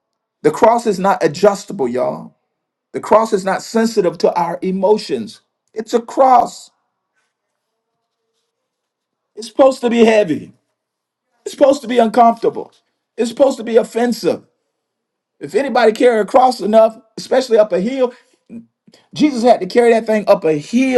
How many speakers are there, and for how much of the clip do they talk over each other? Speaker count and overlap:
1, no overlap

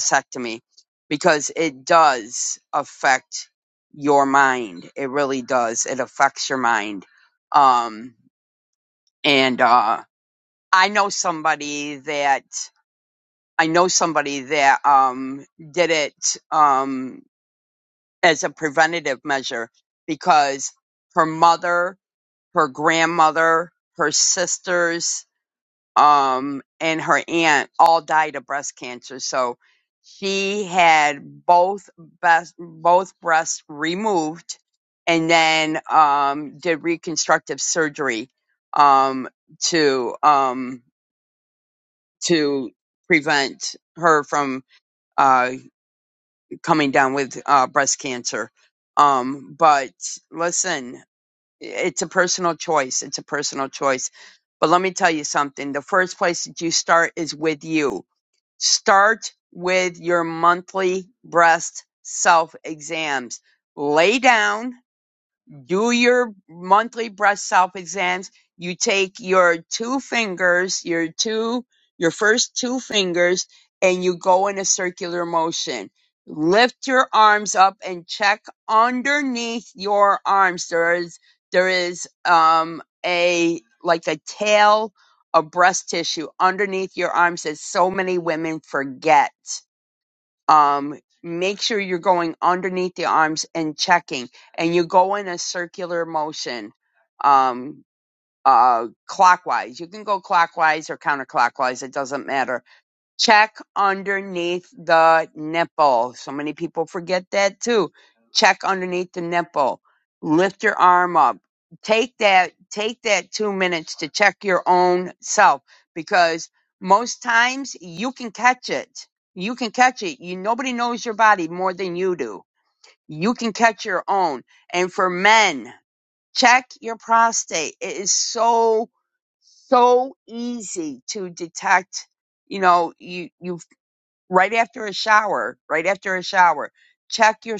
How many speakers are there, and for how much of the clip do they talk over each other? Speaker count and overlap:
1, no overlap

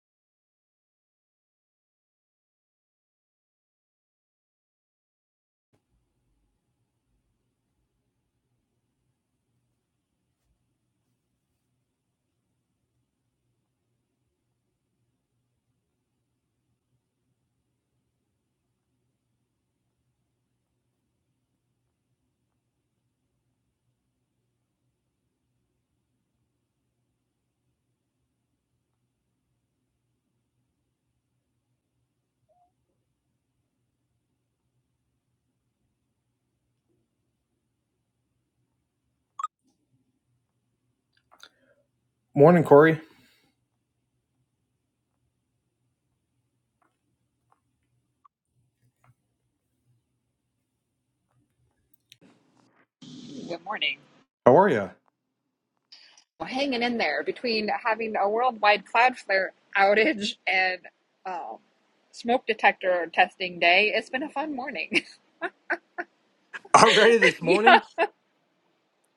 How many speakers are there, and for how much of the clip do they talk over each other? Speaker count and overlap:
2, about 1%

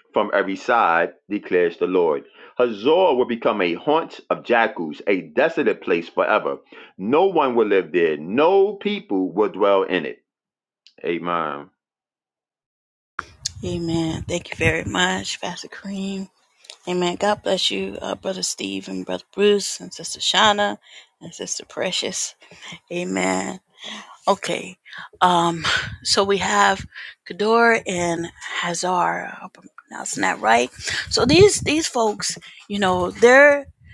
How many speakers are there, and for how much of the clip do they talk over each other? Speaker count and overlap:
2, no overlap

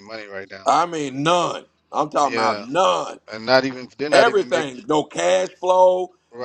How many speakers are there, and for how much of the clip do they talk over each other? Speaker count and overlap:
2, about 16%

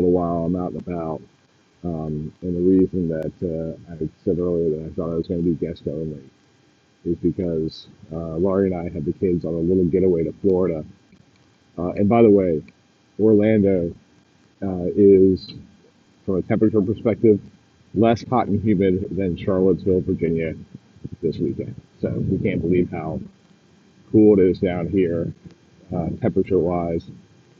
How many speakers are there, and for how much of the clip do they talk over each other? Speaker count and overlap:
1, no overlap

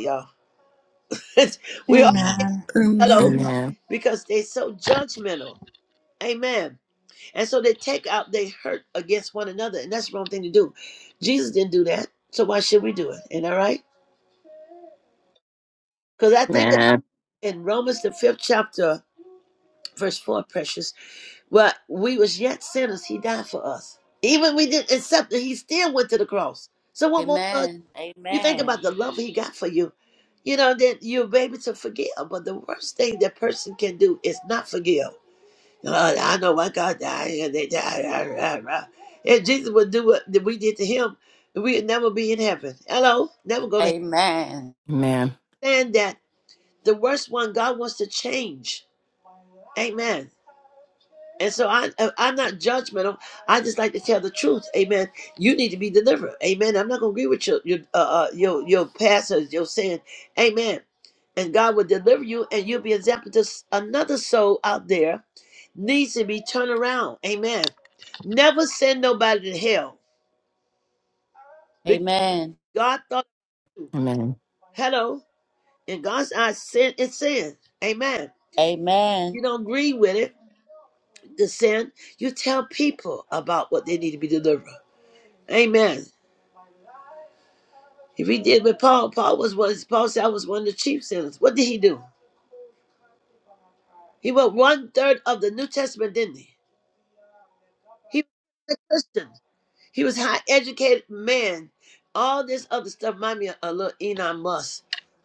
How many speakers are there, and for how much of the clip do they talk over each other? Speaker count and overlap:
4, about 2%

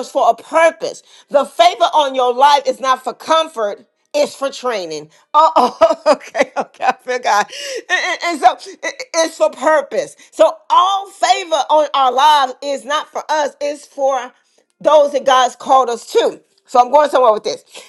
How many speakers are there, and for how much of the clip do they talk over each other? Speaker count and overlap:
1, no overlap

